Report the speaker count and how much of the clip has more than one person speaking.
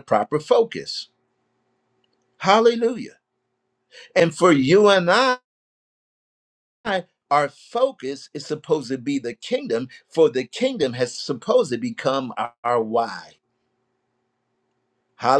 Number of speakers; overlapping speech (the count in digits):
1, no overlap